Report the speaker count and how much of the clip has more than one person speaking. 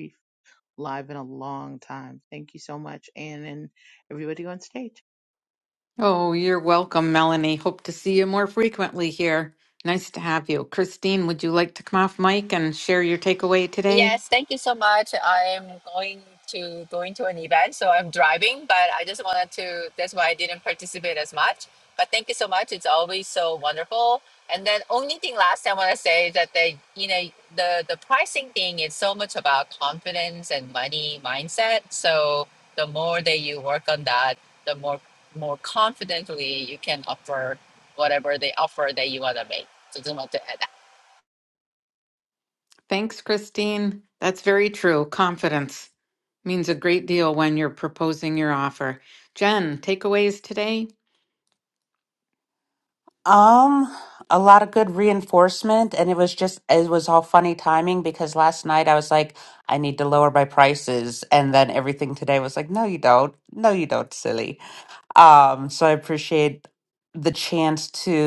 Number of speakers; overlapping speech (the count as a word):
four, under 1%